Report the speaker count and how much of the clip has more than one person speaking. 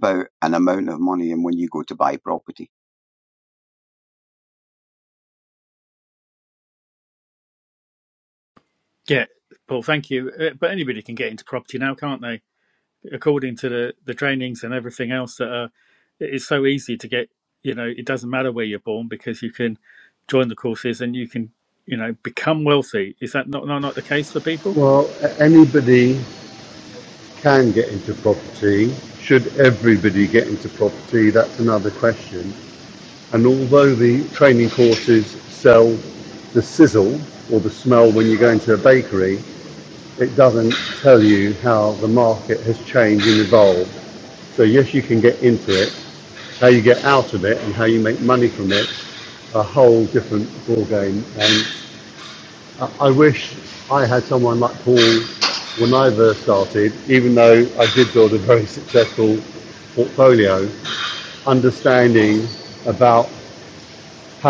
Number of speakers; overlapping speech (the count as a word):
three, under 1%